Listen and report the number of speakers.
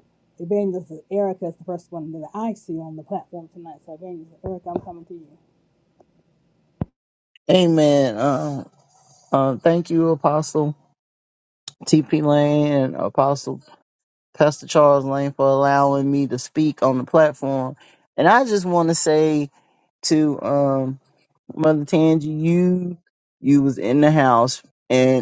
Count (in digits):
2